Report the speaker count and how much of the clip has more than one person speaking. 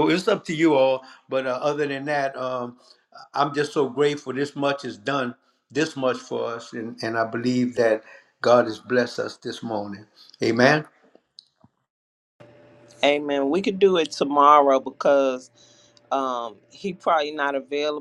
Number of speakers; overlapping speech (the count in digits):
2, no overlap